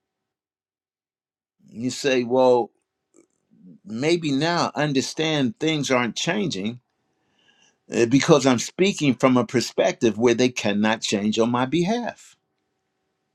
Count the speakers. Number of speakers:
1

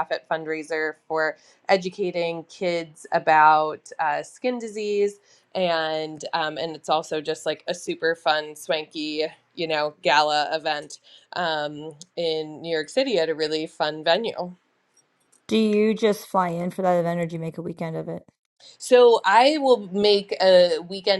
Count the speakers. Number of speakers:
2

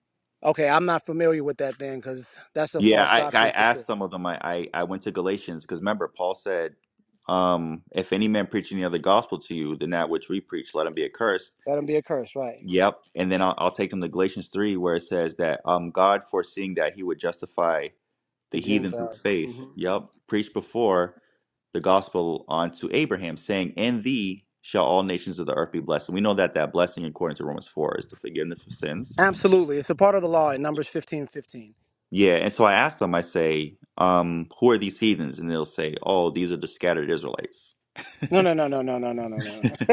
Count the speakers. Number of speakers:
2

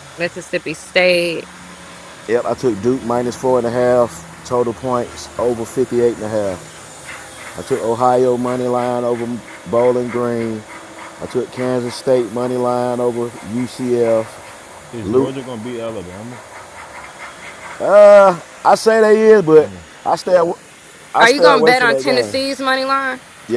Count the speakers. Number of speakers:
3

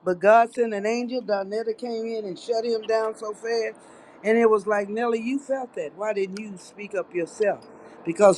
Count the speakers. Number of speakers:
1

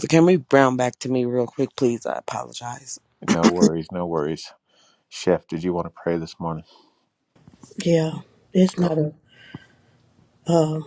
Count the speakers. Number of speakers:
3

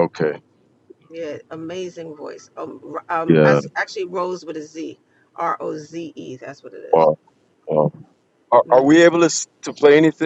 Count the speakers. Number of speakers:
2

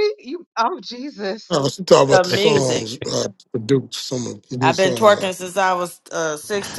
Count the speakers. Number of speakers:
3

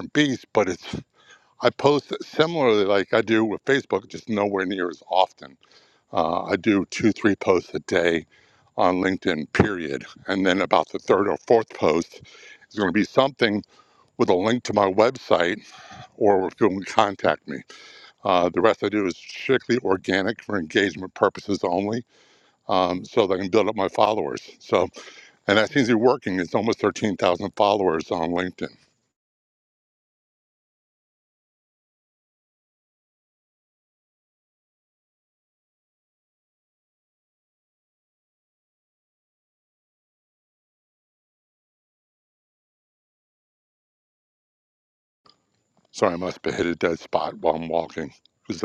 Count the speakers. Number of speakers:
1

